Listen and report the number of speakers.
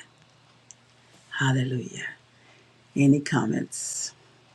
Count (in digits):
1